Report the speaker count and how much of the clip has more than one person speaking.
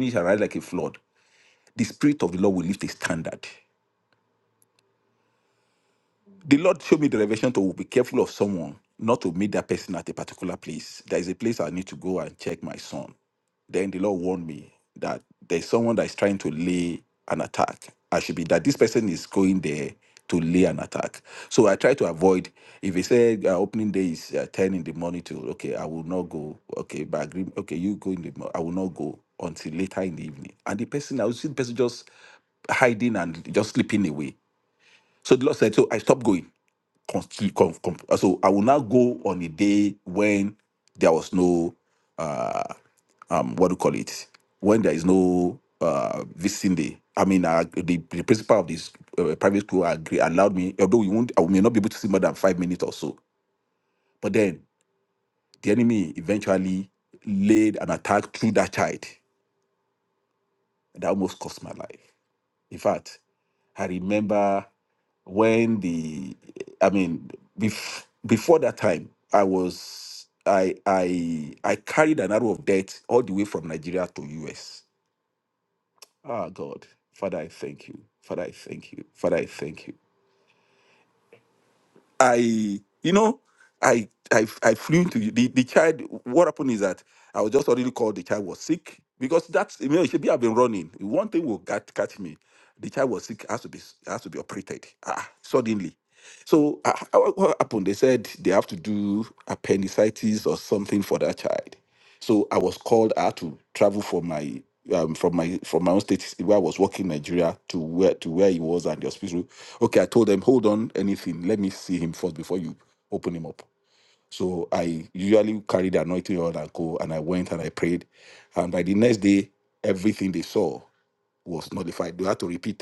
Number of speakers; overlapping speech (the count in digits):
1, no overlap